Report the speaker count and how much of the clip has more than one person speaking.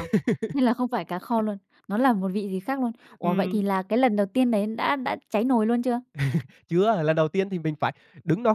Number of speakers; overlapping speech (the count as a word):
two, about 4%